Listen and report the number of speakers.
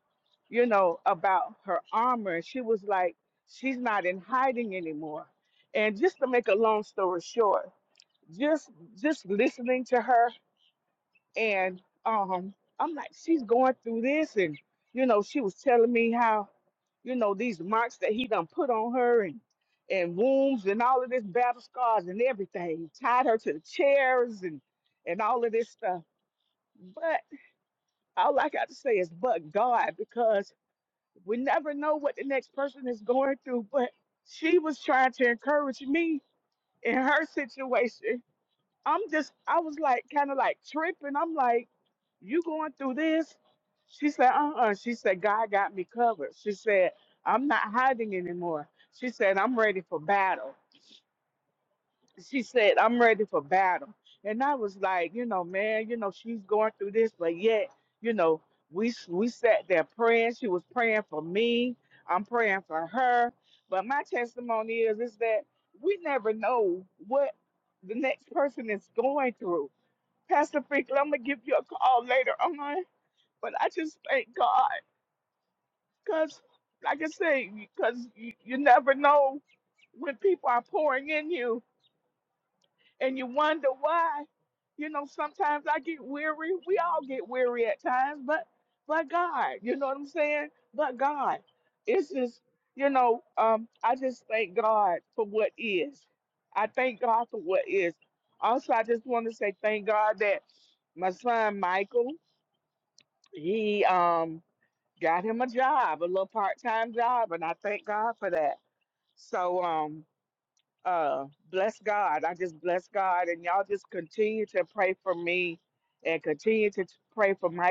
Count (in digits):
1